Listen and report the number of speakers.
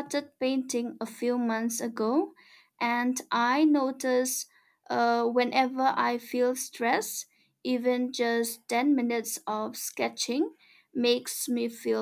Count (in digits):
1